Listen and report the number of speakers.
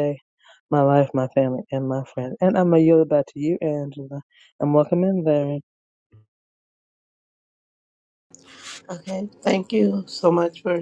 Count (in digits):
2